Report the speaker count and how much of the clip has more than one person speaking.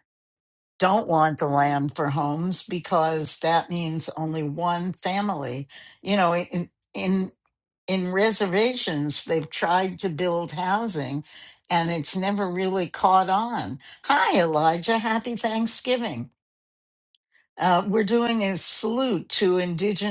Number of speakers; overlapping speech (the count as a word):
one, no overlap